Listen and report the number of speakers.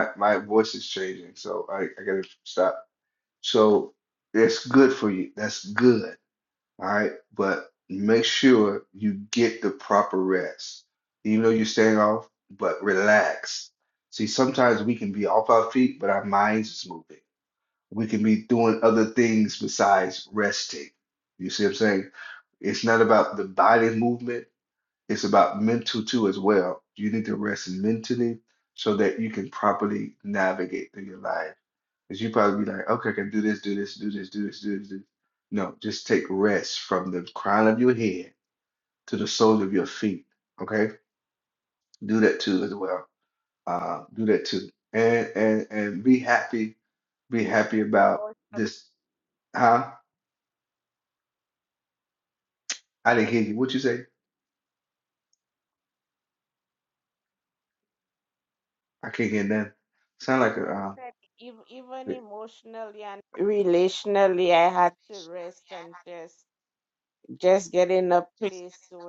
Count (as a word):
two